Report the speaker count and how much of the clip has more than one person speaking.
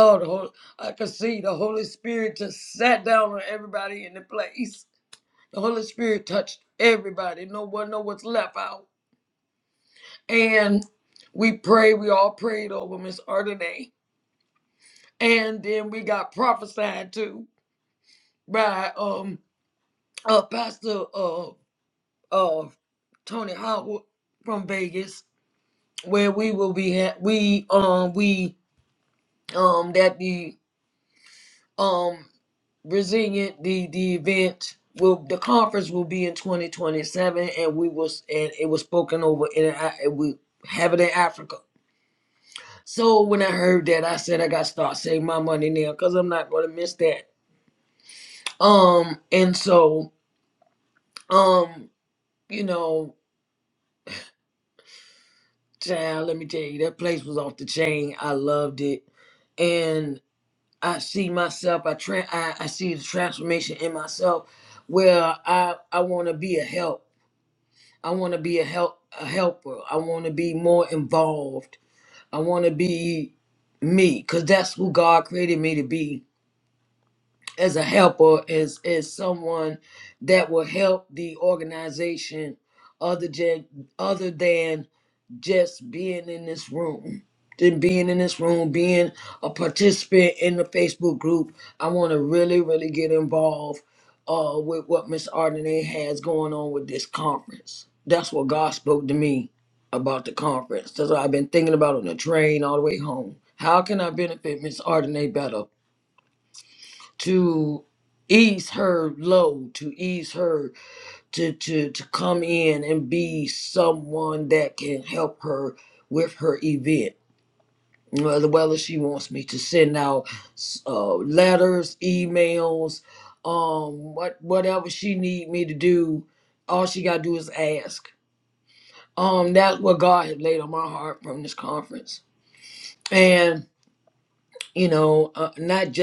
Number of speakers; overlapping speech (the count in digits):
1, no overlap